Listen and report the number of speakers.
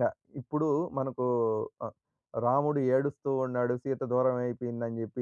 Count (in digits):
1